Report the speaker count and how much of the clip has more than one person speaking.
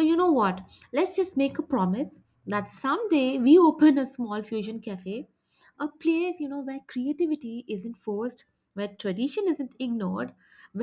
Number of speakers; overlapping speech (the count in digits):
1, no overlap